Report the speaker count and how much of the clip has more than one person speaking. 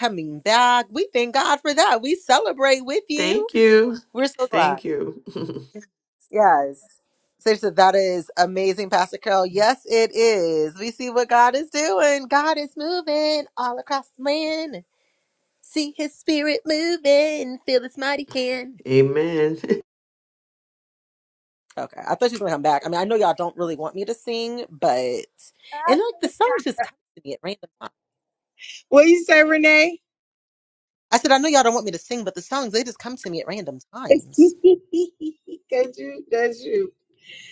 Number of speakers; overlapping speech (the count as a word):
three, about 2%